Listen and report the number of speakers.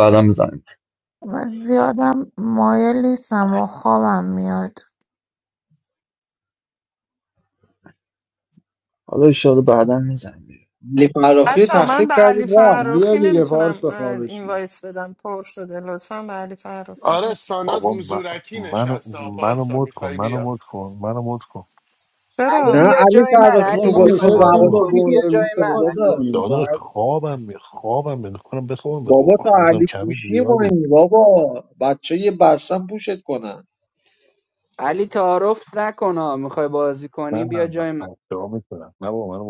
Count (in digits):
8